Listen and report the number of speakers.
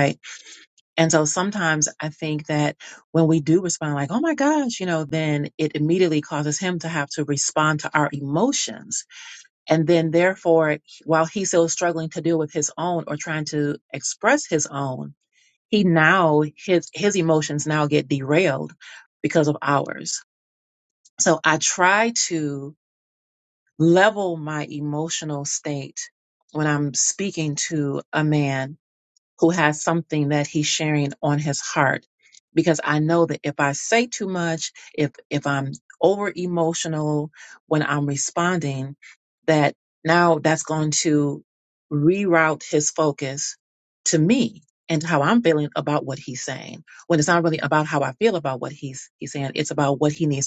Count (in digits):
1